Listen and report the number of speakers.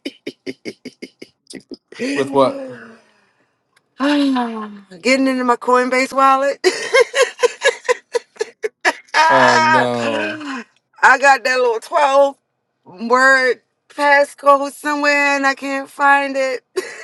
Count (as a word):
two